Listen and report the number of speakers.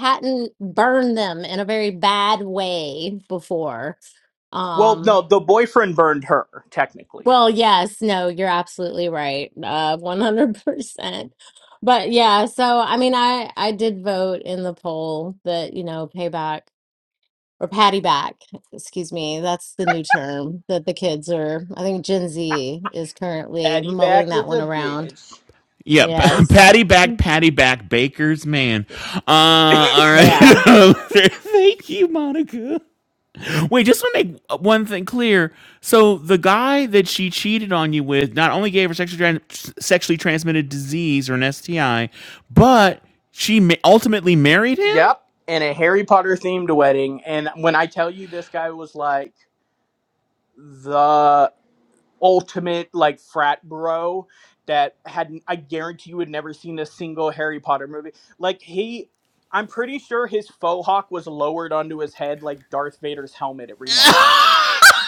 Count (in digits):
3